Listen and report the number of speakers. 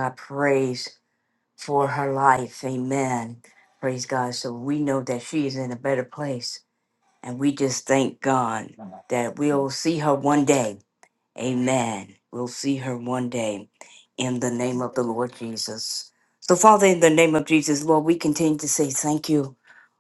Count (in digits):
1